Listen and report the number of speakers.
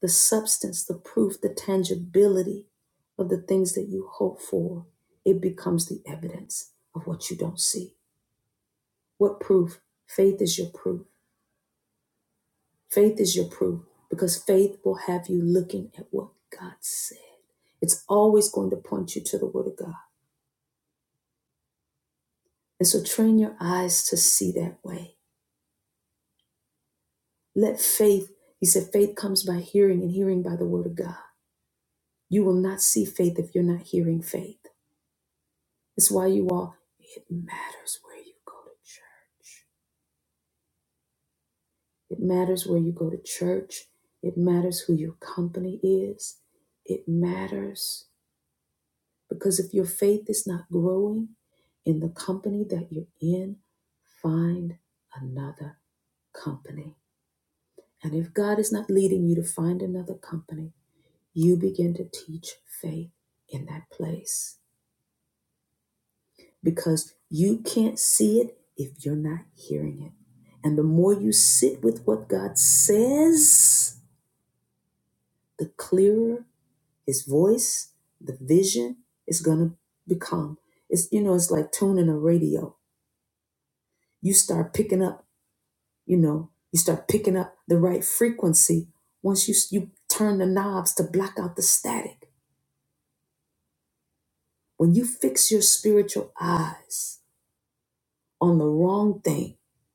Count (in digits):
1